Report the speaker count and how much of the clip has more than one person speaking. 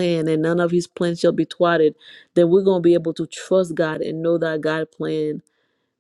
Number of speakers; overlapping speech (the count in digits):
1, no overlap